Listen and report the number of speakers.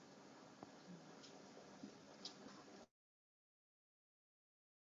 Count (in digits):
0